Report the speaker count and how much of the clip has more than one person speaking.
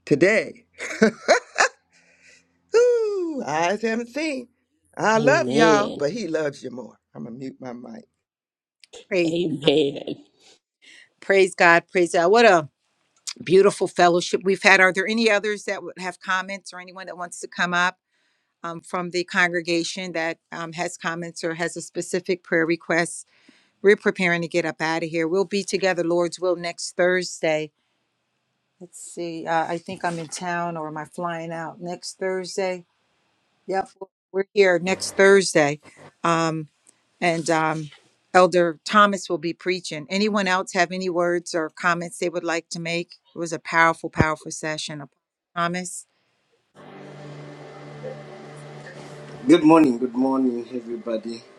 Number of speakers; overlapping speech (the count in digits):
4, about 2%